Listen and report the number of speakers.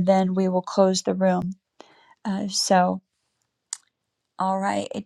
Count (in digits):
1